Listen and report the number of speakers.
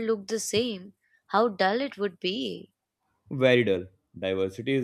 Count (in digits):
2